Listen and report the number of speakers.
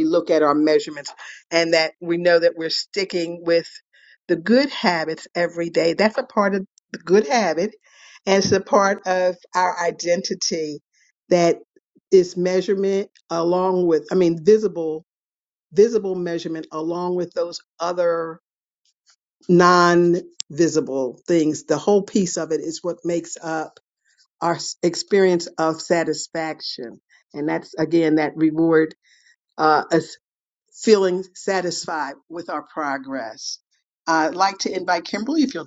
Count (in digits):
1